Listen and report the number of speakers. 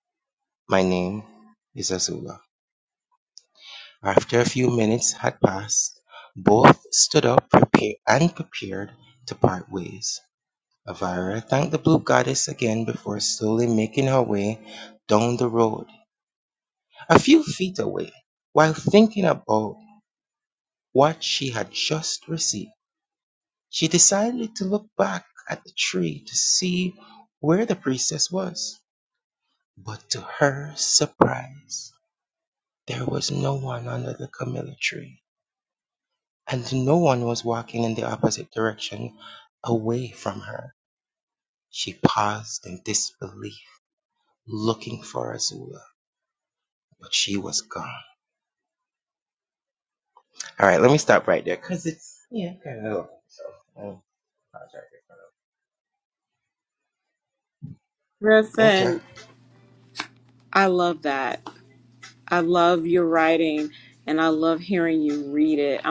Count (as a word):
two